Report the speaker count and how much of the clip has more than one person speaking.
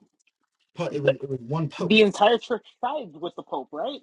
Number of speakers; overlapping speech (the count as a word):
two, about 12%